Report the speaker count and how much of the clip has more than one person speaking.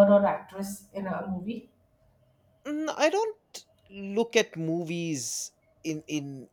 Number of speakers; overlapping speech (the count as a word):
two, no overlap